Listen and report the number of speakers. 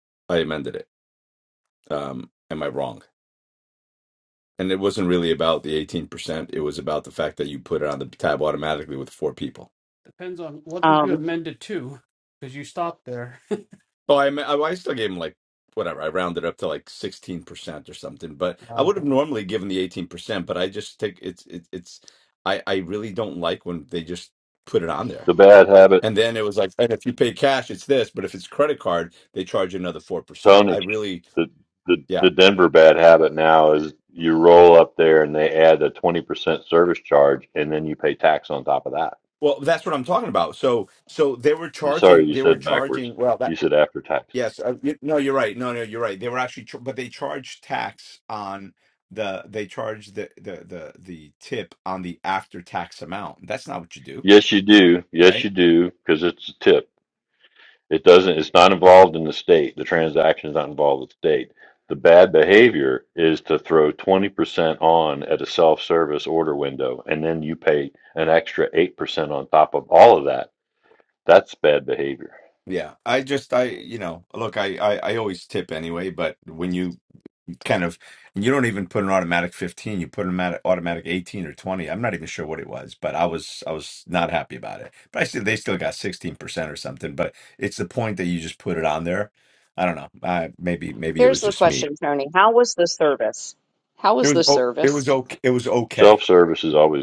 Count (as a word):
four